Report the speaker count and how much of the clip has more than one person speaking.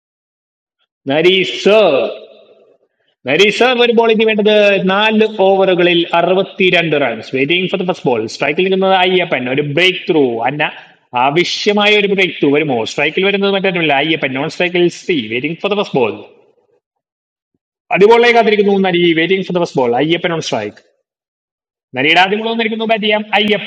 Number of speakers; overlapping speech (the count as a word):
one, no overlap